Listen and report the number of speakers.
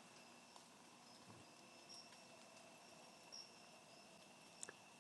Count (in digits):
0